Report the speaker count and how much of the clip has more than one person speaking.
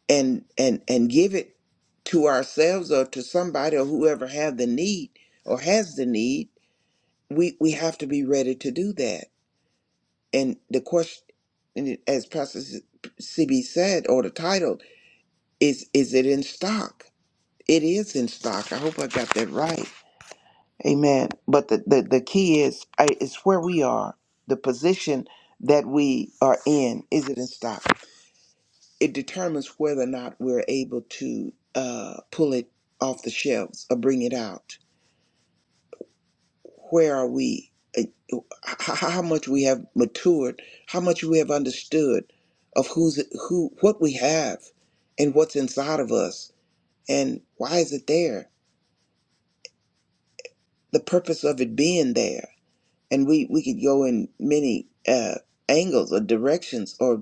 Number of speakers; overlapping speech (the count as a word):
one, no overlap